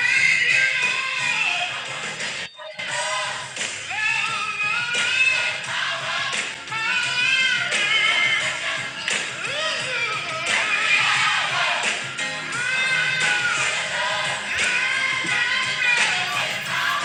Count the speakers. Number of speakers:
zero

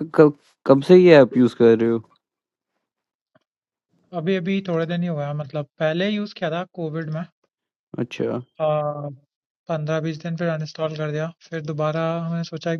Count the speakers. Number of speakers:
two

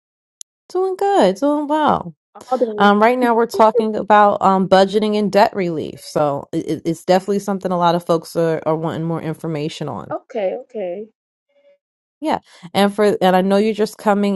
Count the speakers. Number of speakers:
two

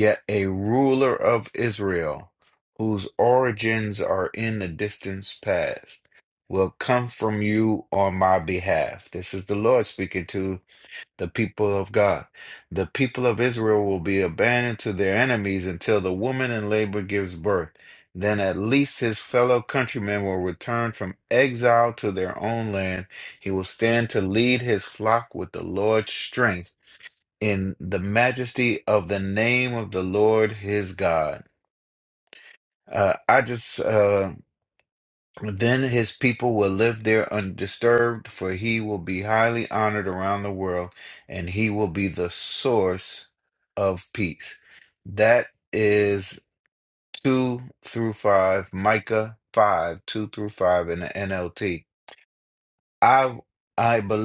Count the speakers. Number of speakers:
one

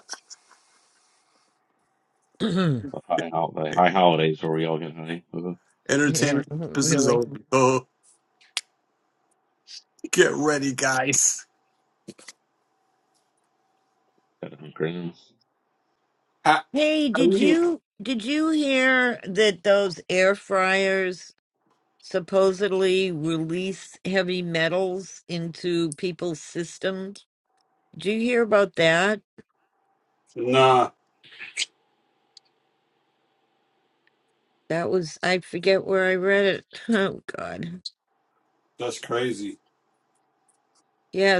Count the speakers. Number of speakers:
three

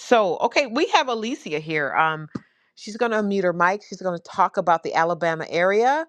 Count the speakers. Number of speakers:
one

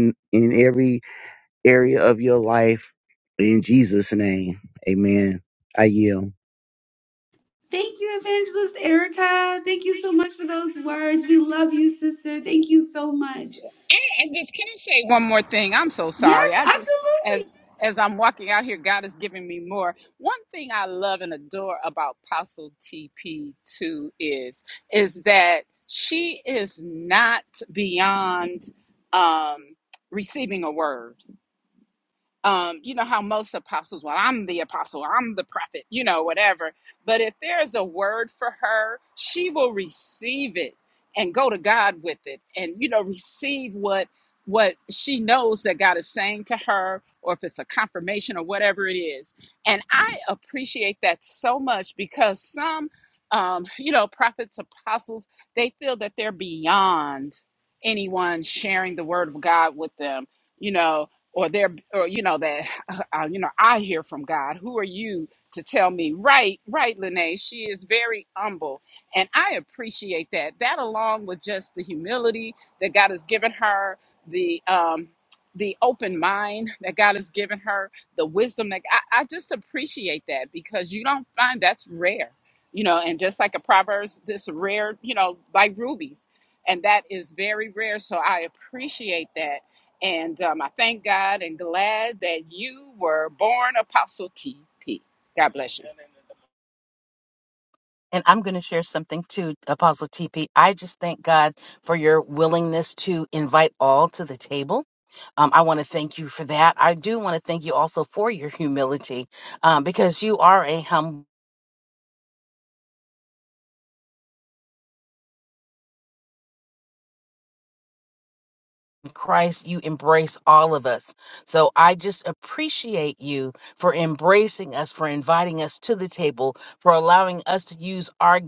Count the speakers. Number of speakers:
four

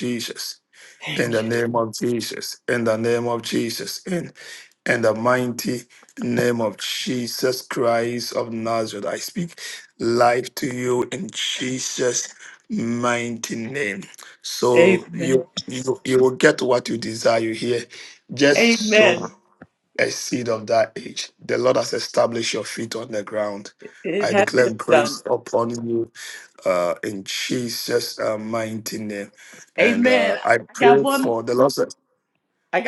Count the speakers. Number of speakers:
two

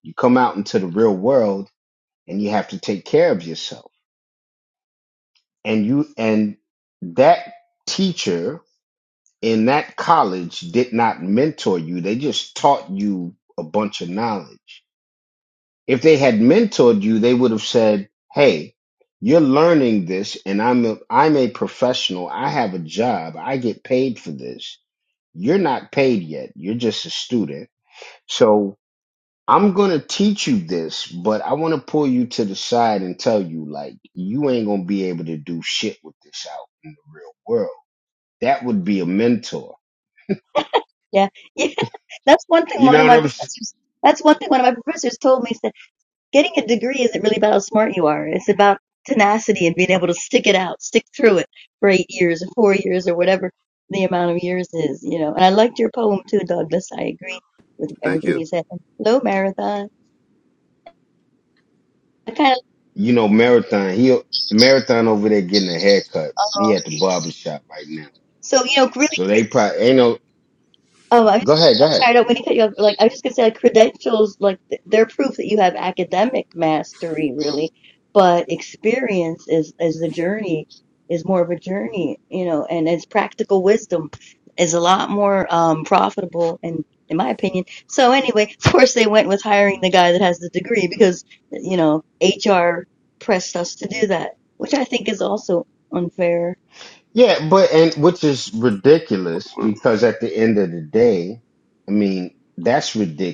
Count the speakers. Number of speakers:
two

